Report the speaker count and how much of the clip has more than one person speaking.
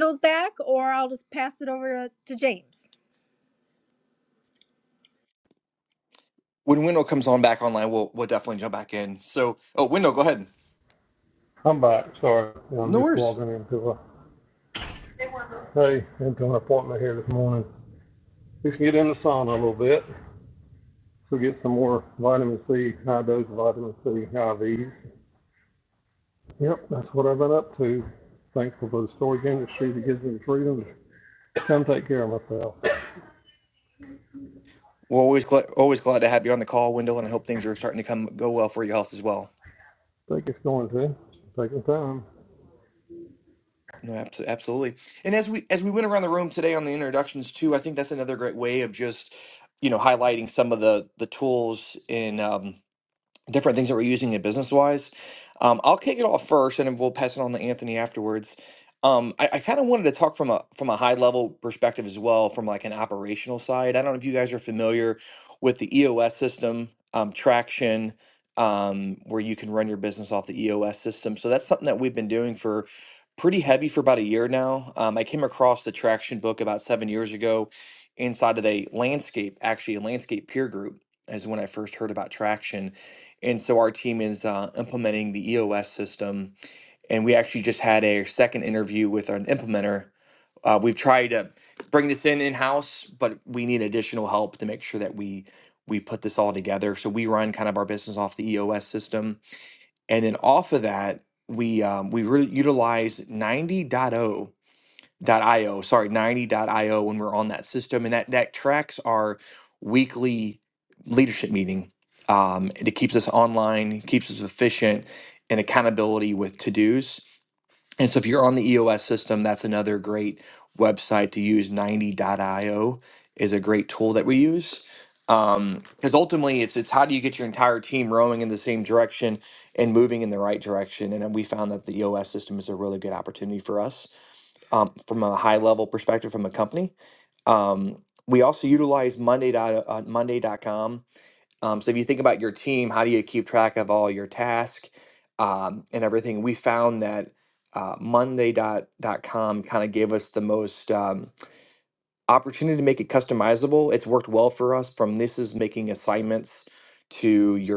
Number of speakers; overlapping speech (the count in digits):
3, under 1%